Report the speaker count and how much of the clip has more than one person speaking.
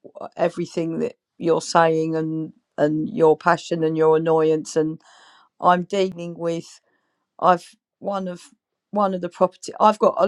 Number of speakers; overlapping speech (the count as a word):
one, no overlap